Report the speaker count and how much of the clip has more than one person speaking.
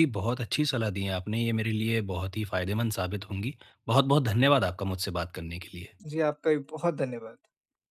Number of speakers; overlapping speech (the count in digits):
2, no overlap